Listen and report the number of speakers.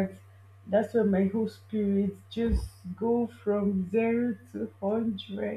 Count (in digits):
1